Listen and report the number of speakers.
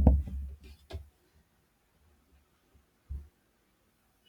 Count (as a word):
zero